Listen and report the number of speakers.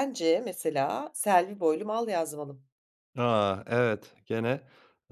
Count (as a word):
two